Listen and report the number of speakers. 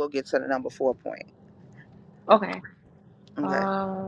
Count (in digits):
2